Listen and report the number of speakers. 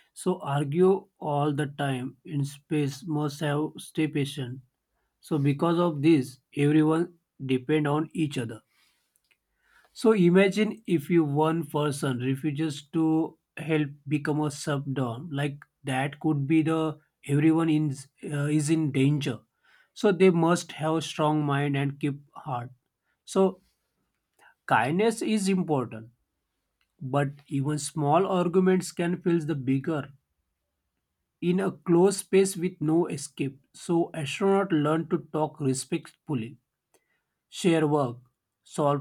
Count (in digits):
1